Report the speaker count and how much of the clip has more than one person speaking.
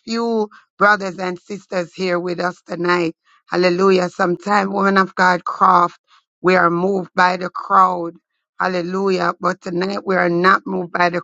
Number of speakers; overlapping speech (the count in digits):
1, no overlap